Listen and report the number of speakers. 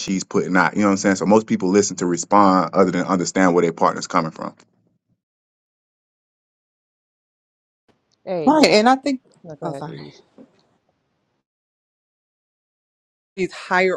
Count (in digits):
3